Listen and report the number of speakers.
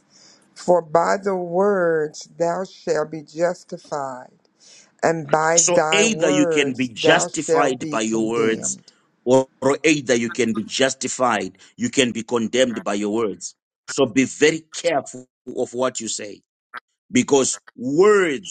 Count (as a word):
two